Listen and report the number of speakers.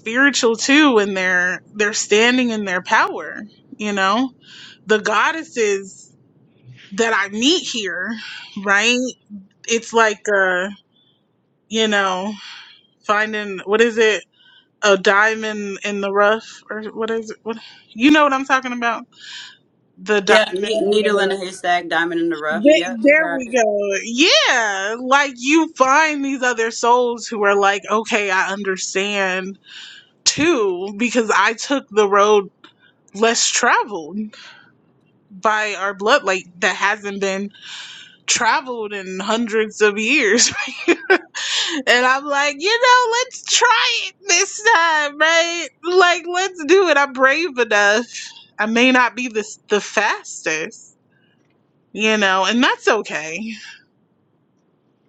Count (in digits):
2